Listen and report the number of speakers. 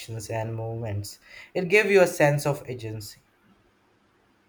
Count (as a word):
one